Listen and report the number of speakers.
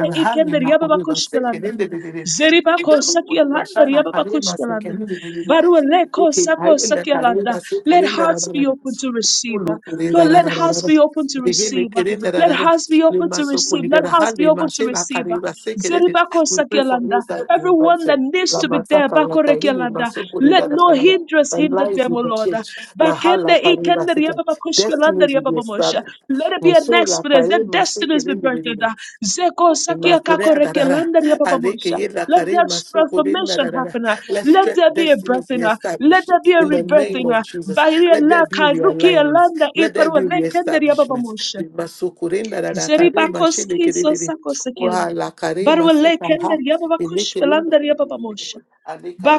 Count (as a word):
two